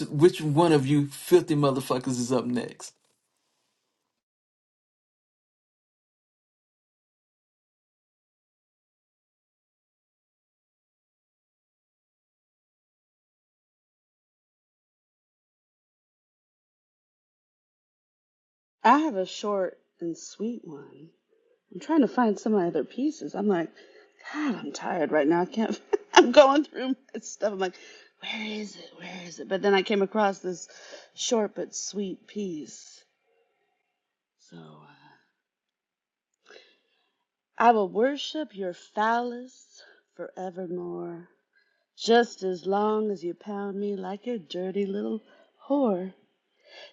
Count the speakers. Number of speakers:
2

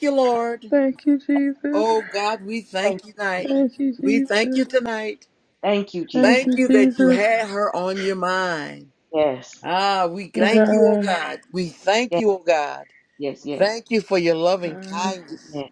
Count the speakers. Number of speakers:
3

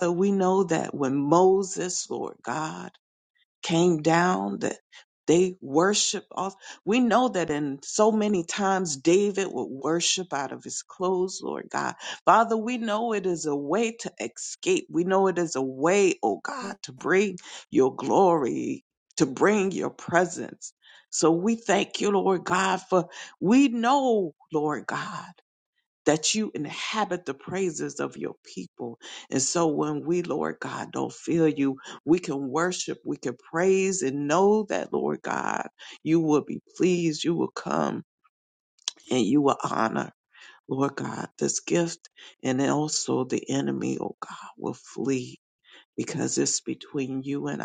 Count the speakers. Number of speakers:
1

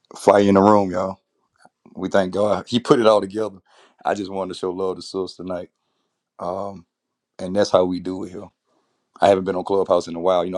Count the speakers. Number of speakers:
1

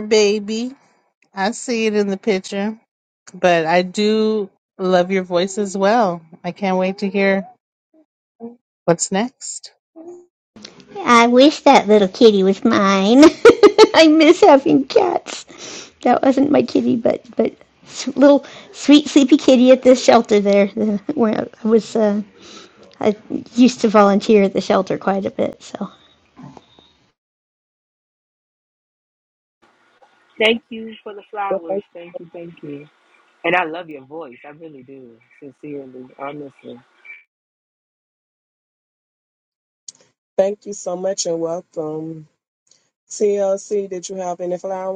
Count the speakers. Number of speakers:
4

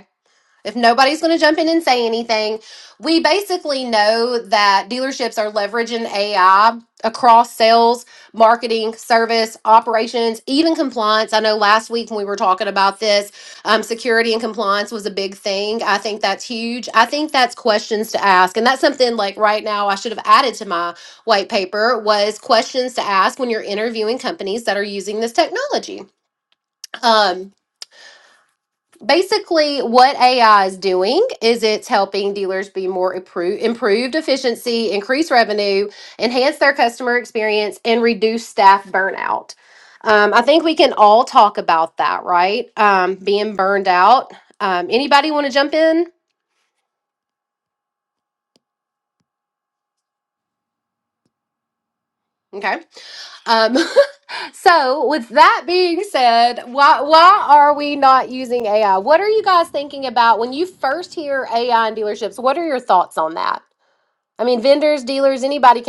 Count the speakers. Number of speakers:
1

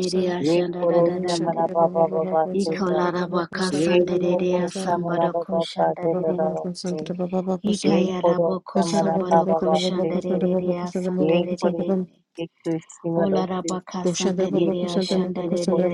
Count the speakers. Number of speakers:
3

